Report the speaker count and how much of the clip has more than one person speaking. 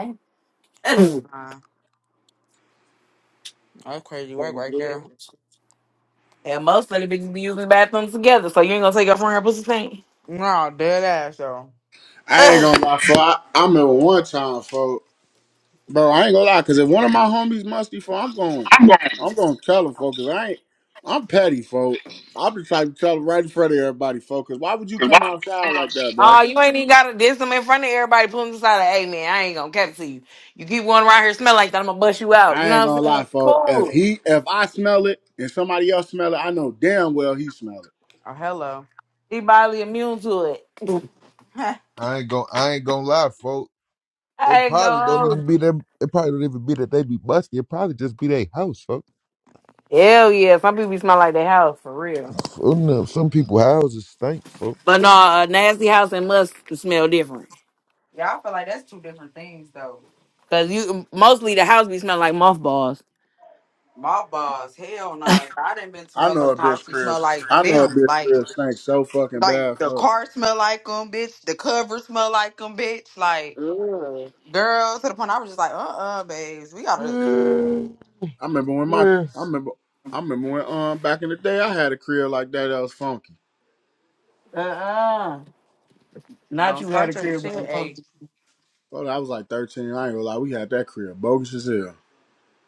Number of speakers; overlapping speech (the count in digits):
4, about 8%